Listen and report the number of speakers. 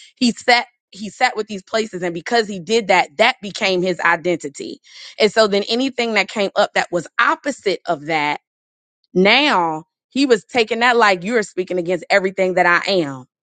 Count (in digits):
1